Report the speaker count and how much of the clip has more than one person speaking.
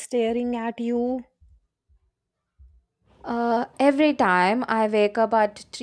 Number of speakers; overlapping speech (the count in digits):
2, no overlap